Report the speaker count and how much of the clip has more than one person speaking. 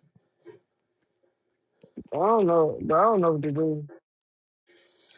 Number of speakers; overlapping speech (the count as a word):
one, no overlap